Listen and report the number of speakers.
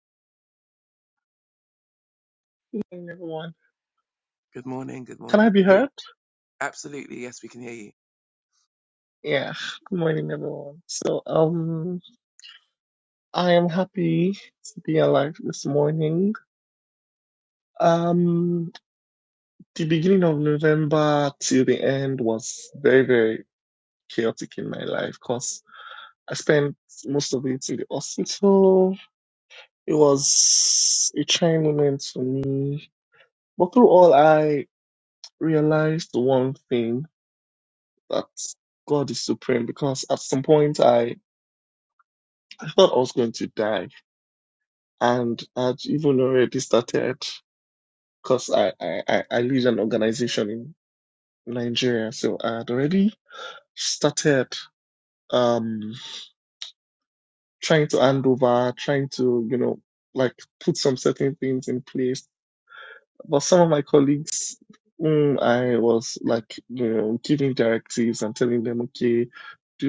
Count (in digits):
2